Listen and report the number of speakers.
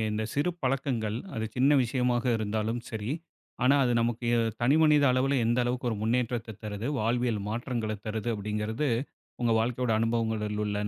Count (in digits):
1